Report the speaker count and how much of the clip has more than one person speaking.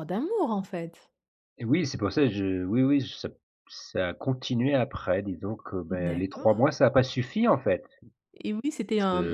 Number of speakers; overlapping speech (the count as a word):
two, about 10%